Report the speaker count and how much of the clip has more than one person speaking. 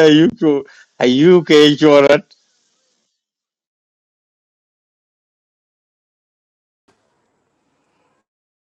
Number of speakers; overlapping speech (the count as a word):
one, no overlap